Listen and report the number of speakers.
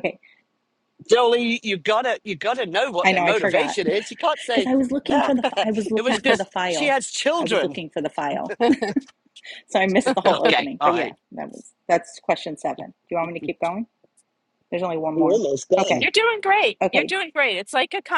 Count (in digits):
3